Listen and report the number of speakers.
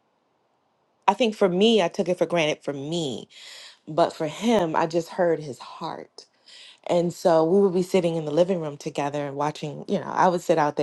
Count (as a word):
one